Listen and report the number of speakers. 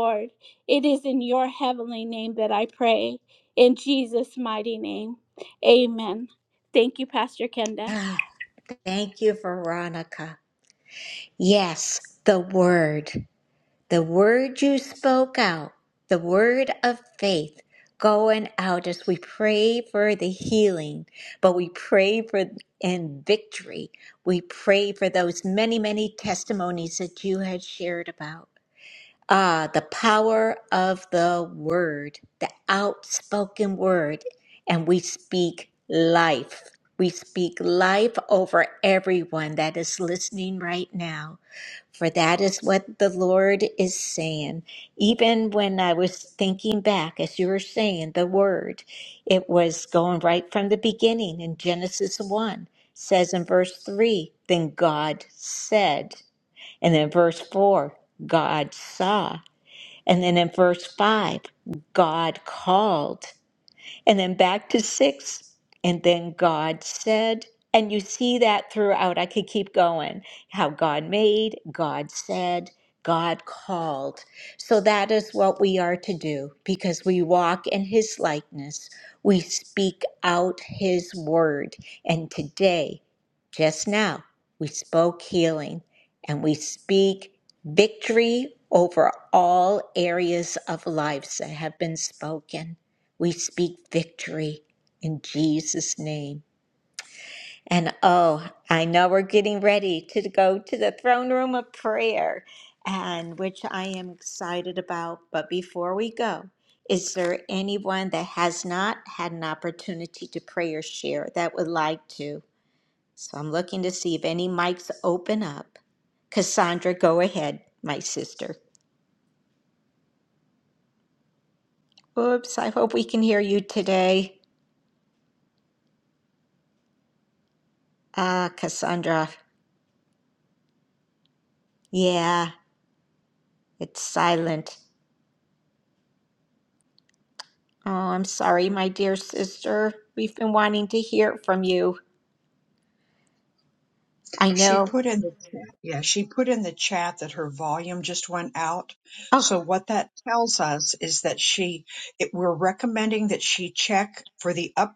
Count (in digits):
3